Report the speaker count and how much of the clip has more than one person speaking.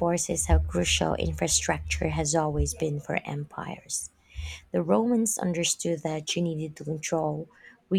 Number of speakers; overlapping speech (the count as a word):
one, no overlap